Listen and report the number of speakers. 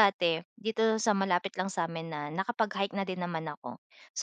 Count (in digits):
1